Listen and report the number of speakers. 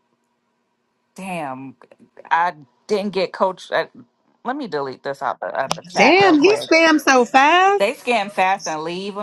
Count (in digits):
2